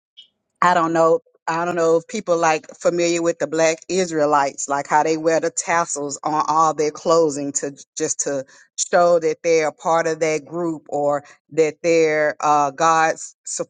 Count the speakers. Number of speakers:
1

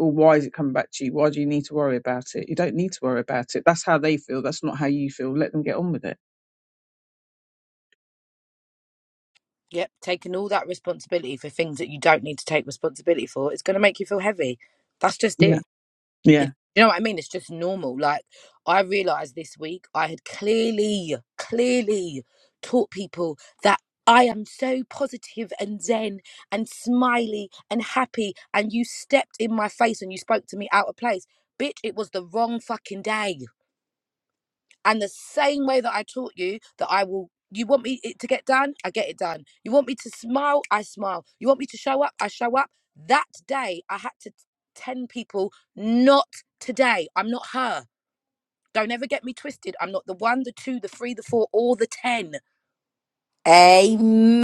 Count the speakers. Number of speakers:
3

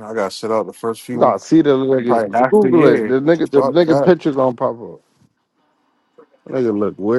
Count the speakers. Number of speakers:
2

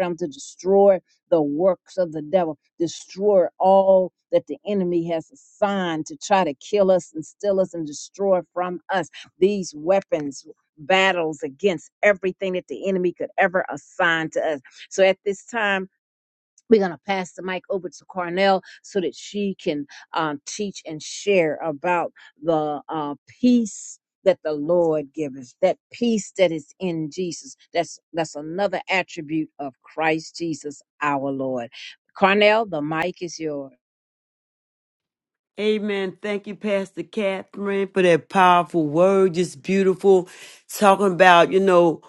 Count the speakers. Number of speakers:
2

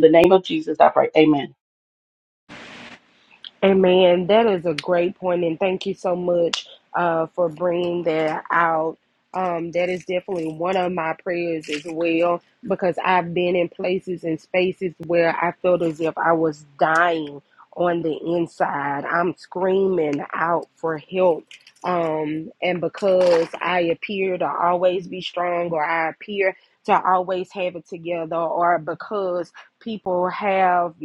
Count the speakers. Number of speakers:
2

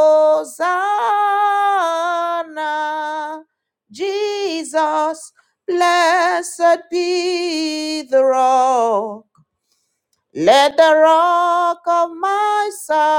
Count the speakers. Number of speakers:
1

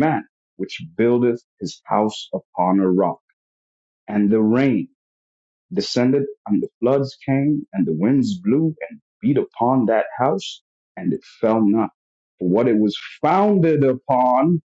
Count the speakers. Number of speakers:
1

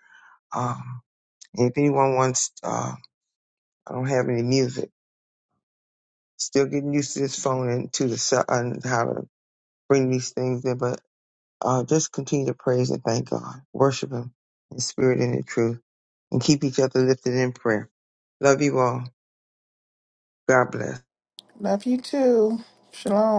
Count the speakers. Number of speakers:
2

